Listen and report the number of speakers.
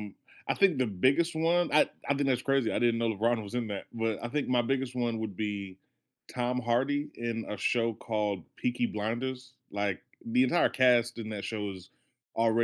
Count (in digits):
1